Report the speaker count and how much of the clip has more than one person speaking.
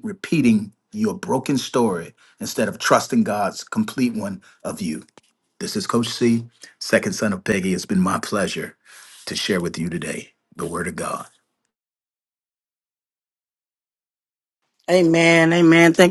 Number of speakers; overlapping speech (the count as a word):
two, no overlap